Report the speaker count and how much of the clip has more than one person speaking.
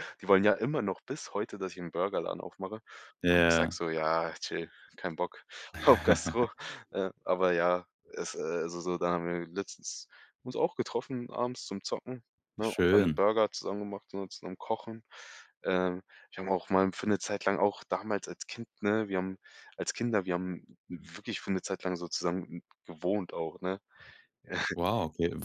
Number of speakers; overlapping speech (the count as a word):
two, about 4%